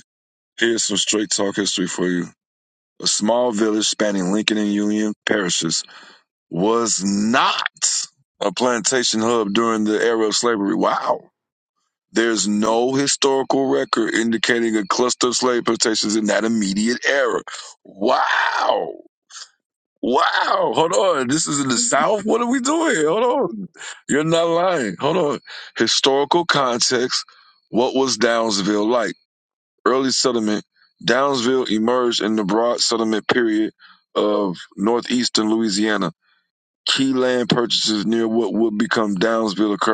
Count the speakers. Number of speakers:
1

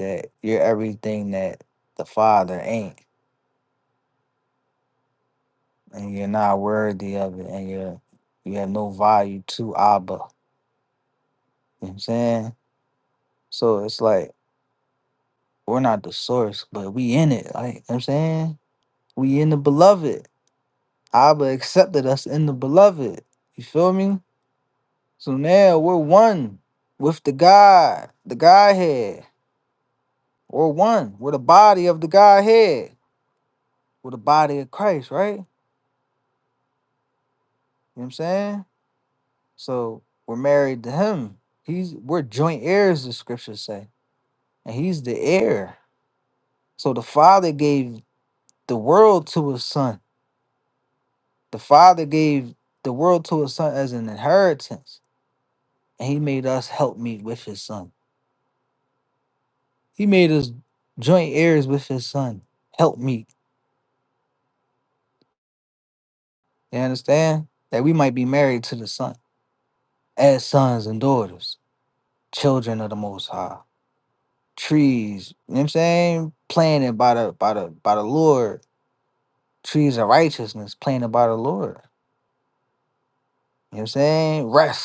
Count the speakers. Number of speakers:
1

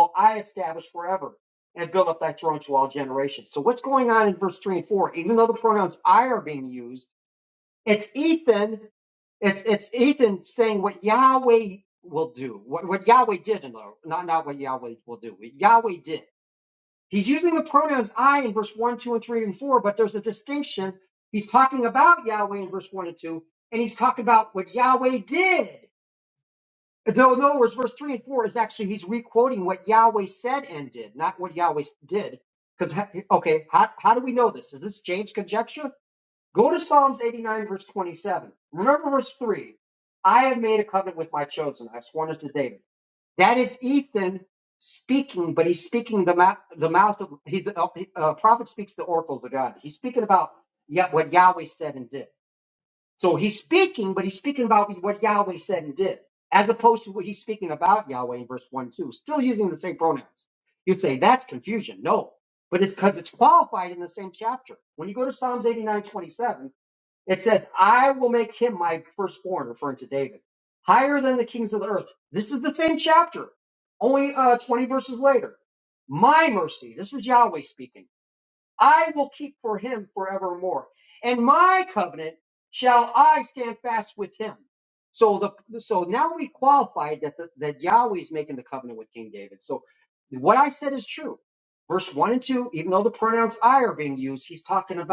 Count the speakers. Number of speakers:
1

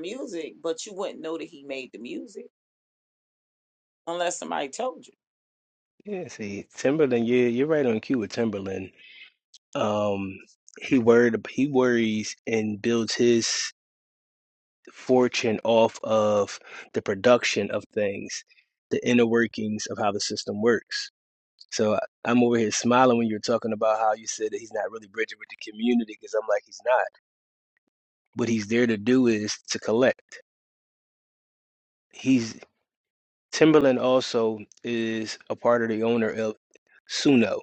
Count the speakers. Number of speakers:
2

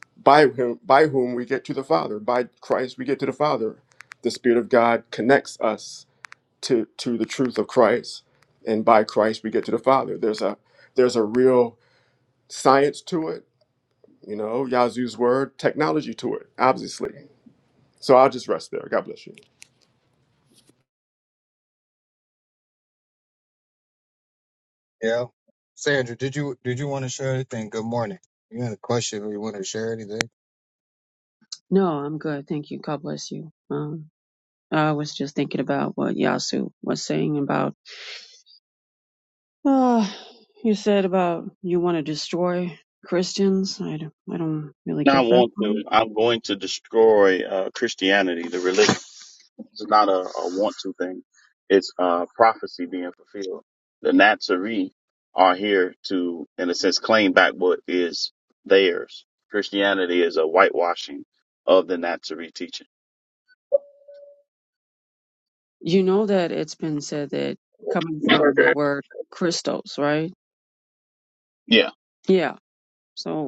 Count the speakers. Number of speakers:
4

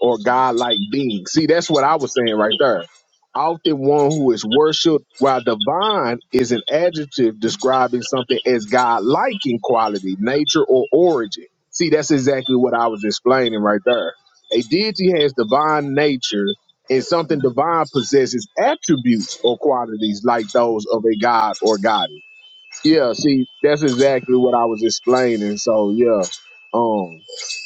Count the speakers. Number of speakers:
1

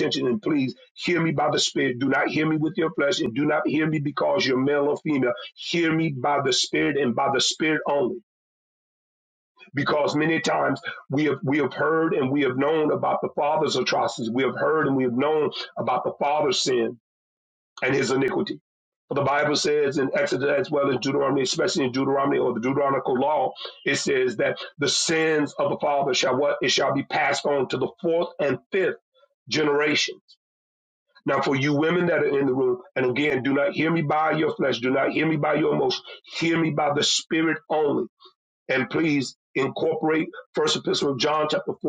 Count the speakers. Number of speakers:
1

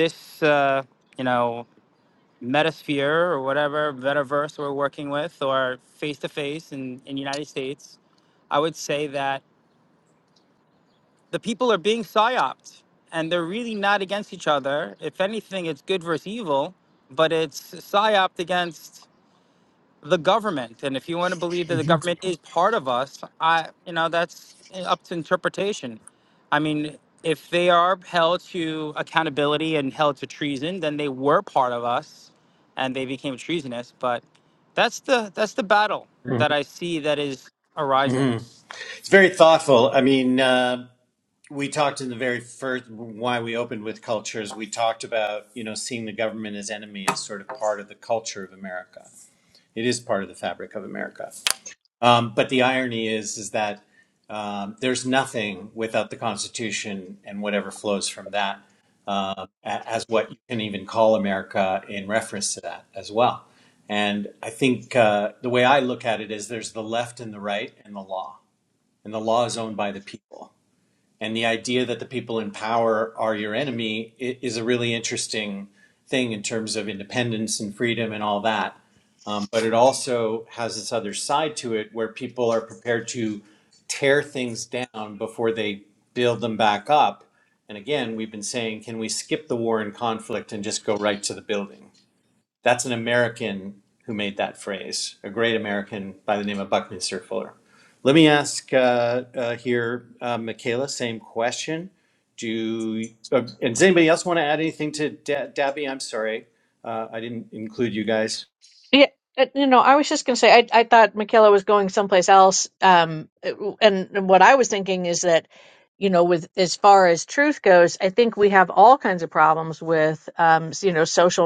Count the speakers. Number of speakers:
3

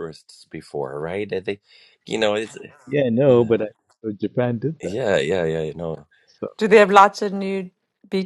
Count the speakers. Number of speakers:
3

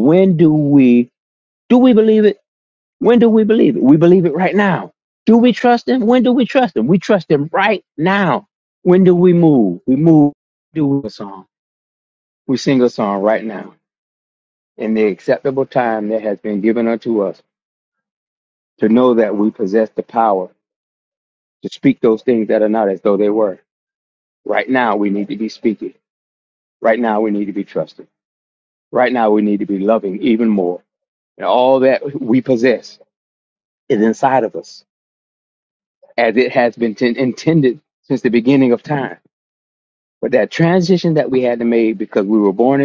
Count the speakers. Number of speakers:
1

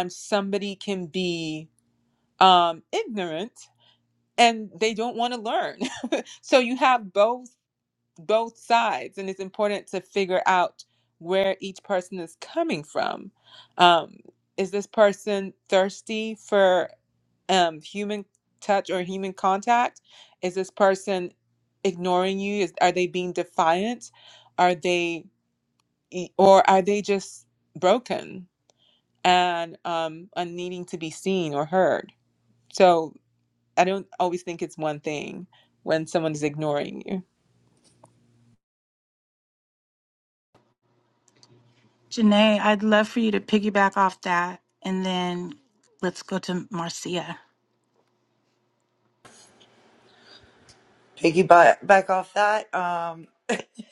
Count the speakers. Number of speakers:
3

